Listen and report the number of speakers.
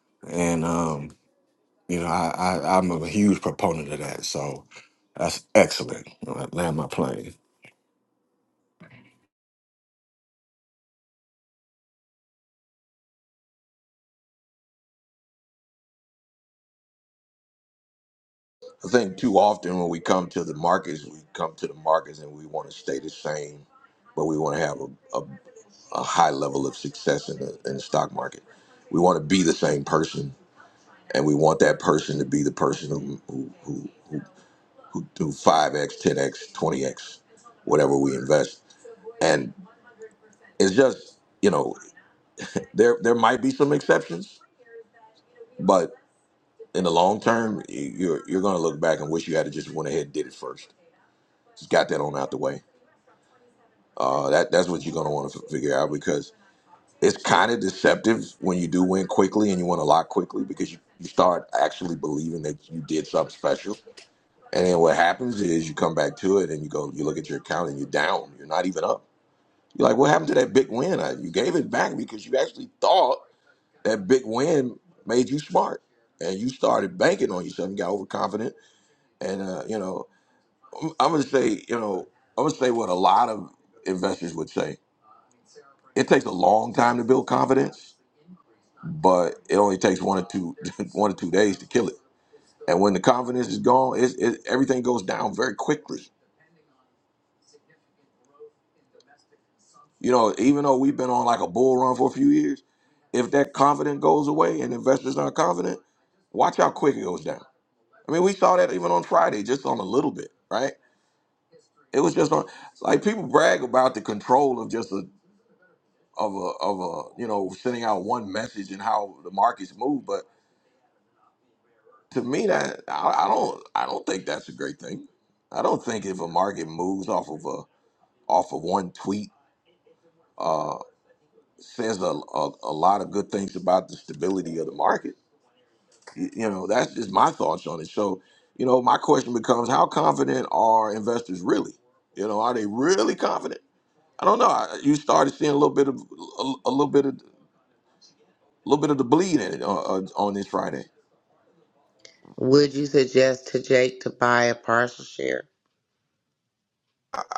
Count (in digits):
3